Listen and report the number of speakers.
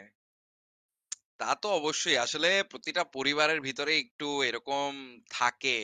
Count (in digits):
1